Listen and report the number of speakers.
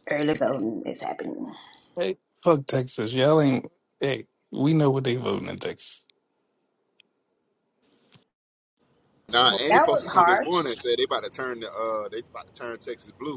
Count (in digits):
3